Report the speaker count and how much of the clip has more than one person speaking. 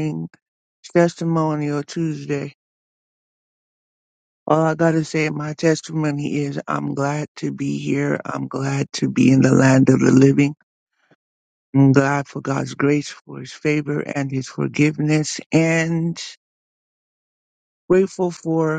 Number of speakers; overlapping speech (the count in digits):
1, no overlap